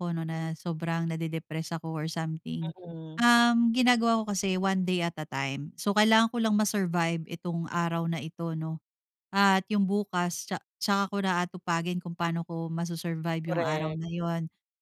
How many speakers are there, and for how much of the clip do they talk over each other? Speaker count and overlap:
two, about 4%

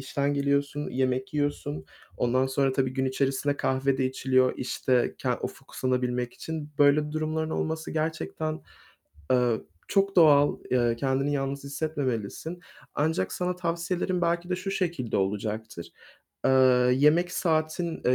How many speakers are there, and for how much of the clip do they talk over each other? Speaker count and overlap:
one, no overlap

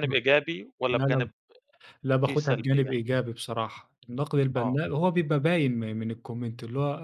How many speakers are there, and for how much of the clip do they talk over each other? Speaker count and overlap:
two, about 20%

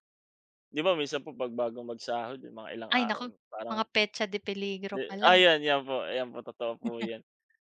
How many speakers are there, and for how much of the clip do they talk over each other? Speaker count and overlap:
two, about 13%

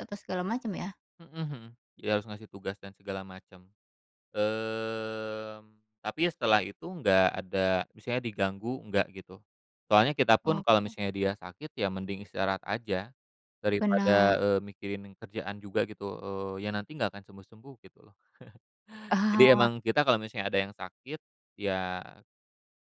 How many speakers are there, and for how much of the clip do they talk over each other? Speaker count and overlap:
two, about 6%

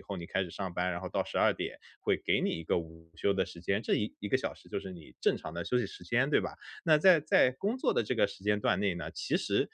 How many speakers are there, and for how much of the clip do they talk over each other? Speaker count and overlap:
one, no overlap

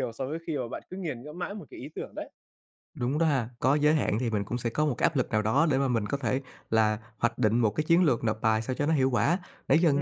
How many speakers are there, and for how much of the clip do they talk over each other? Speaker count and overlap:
two, about 1%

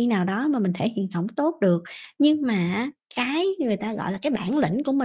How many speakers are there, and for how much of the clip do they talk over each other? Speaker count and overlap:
one, no overlap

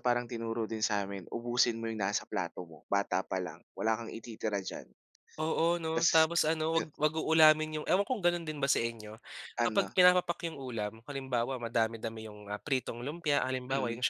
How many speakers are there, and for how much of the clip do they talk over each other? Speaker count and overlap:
two, about 6%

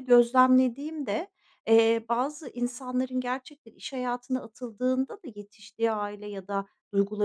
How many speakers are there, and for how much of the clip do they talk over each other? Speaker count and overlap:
one, no overlap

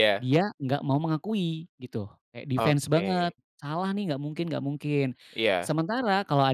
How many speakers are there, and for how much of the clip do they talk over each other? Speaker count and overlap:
two, about 13%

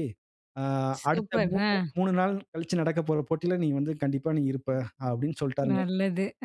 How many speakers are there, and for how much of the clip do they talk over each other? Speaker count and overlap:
two, about 14%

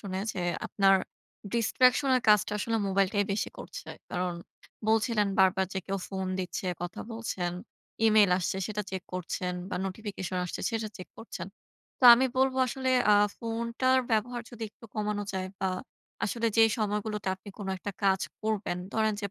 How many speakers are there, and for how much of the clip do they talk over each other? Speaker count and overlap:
one, no overlap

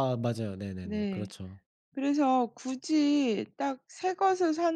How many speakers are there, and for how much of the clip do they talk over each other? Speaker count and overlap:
two, about 8%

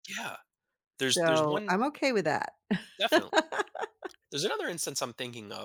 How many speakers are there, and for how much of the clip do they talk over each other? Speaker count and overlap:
two, about 10%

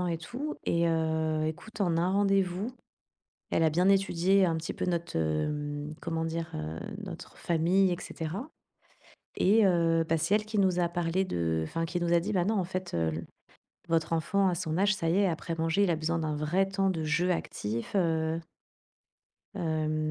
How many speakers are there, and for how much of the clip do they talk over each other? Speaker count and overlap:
one, no overlap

